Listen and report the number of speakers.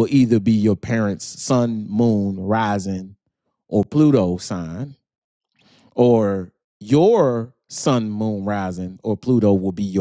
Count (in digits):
1